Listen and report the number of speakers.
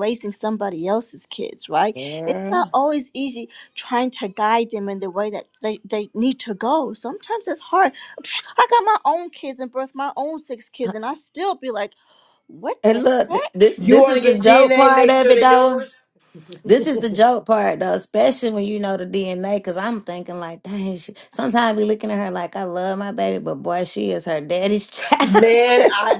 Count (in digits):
3